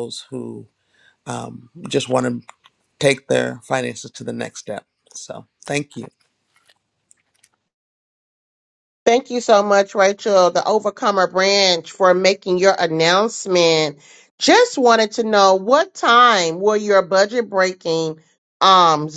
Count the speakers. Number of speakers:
two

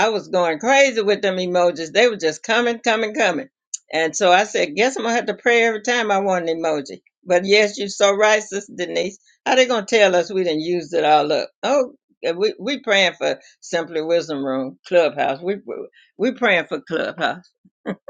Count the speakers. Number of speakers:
one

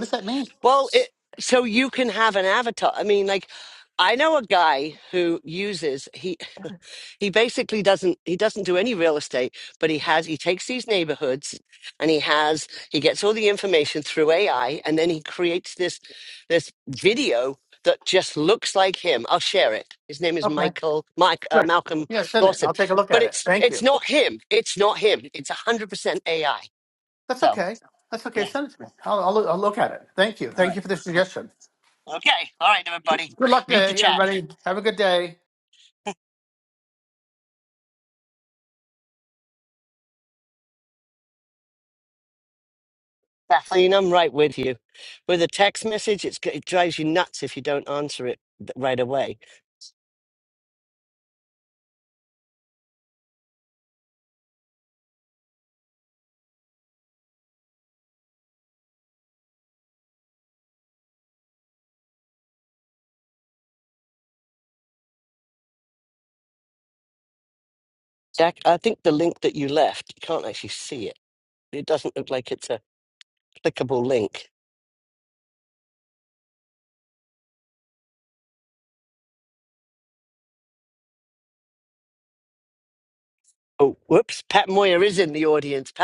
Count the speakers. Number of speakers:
two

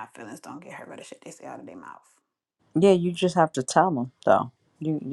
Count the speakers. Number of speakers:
two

